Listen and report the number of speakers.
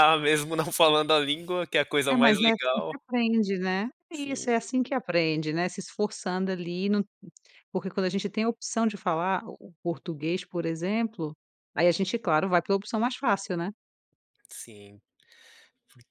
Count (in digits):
2